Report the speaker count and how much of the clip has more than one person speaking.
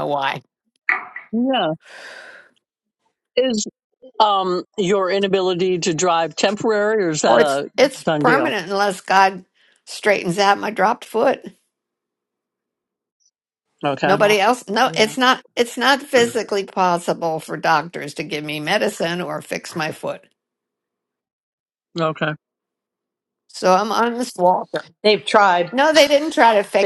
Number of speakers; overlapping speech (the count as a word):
three, about 6%